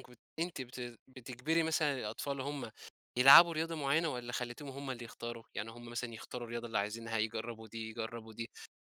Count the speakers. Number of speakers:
one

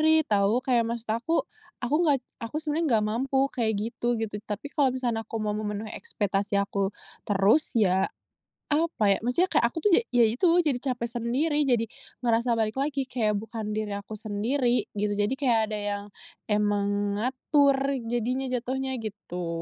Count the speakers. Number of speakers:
one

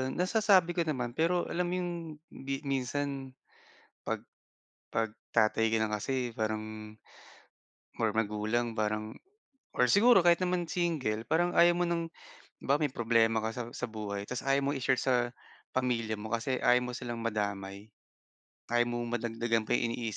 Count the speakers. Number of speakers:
one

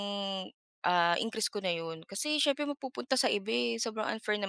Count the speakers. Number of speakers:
one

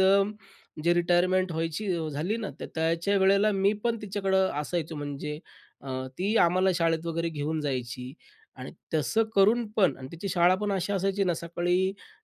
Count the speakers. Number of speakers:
one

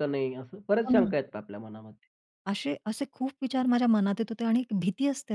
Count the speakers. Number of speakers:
two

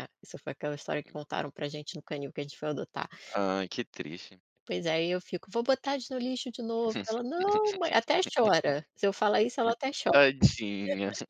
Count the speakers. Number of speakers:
two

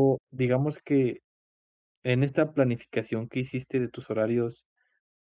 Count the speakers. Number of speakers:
one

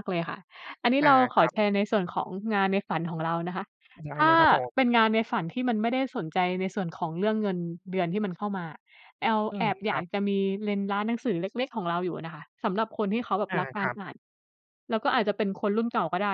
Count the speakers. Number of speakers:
two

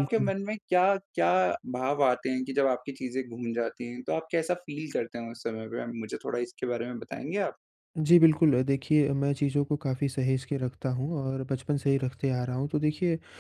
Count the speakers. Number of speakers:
two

